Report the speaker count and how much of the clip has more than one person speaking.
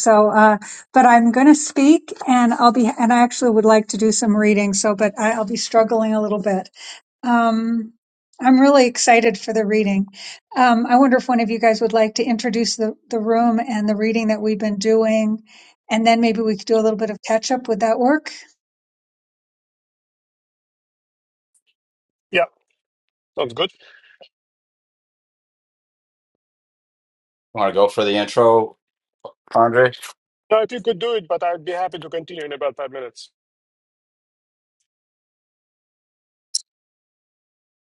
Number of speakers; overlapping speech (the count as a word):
three, no overlap